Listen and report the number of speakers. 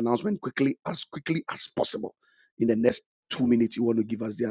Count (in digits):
1